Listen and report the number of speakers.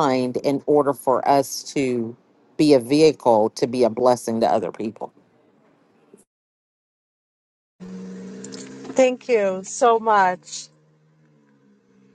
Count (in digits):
2